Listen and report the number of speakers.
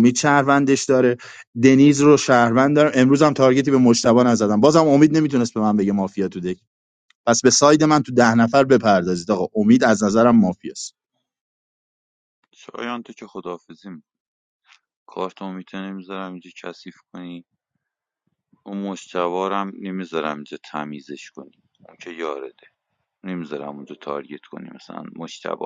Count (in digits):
2